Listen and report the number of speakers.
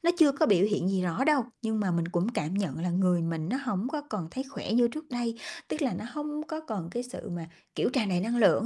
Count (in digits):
1